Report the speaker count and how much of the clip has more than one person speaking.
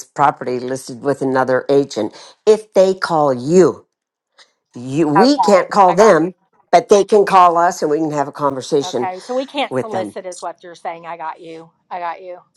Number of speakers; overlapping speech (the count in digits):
2, about 14%